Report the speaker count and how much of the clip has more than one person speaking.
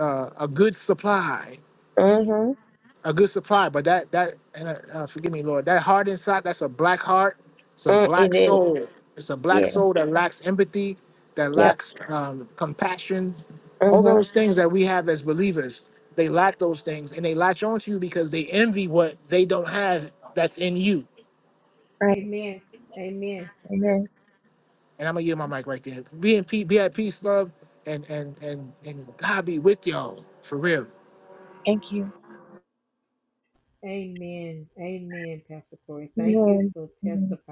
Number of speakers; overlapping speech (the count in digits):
3, about 7%